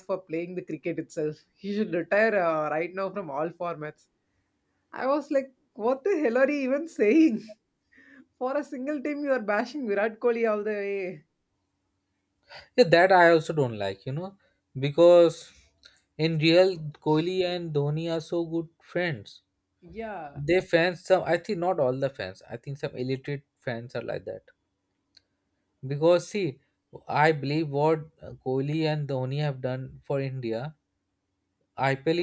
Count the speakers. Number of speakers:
2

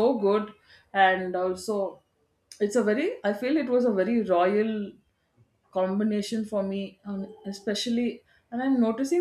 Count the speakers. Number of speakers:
1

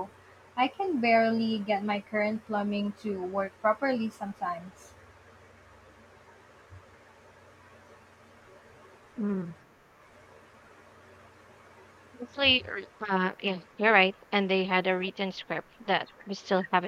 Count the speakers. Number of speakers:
2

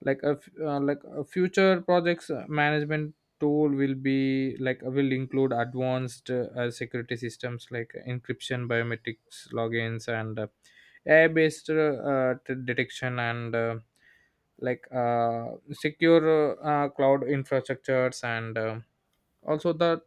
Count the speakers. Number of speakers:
1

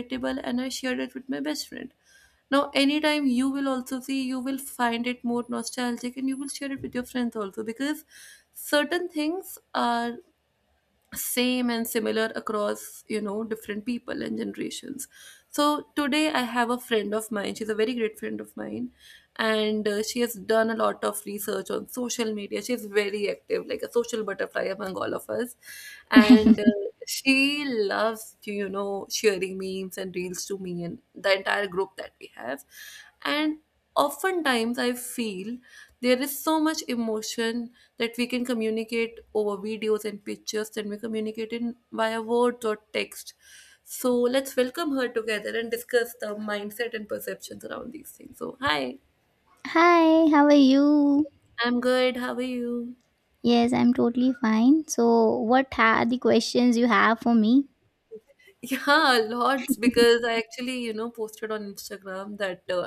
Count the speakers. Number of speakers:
2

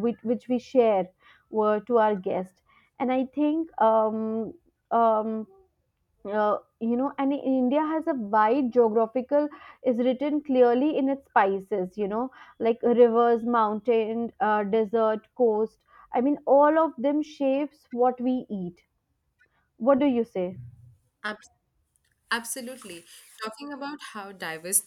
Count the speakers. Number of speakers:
2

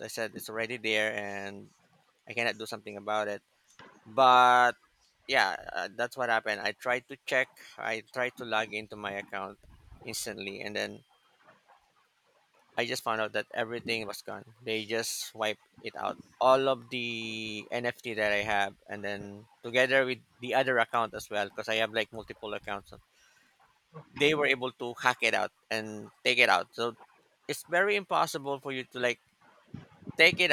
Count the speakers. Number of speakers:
1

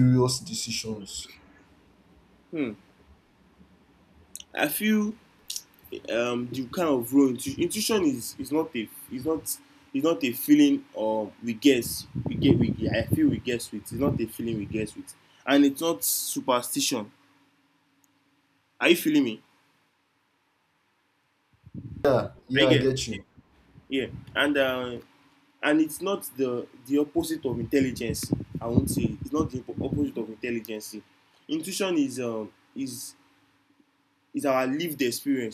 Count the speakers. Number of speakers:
2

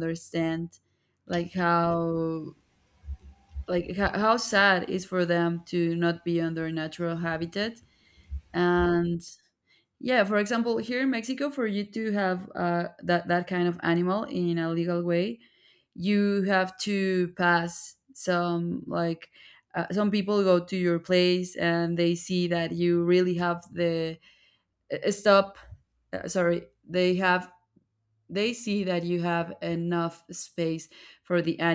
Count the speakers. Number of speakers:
1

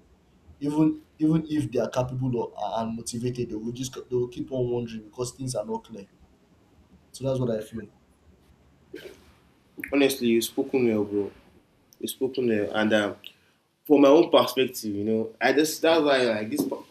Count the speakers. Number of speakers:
2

